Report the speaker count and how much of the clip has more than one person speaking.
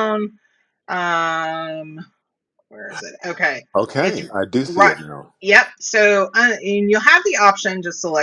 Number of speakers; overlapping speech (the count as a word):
two, about 7%